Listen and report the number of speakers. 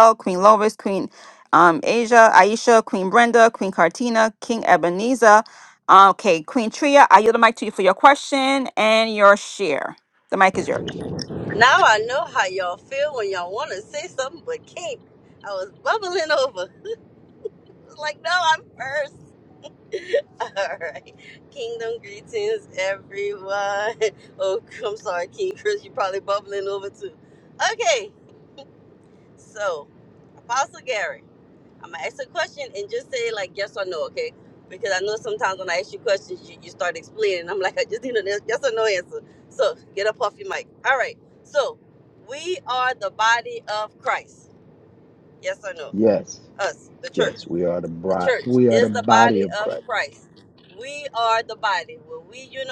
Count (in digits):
3